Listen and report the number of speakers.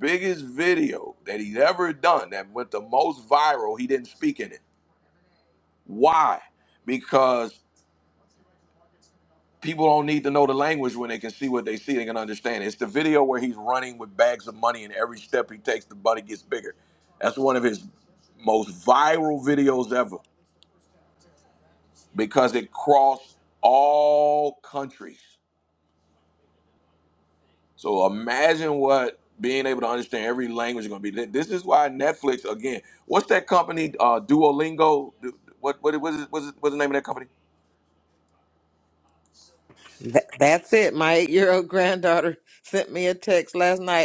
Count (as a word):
two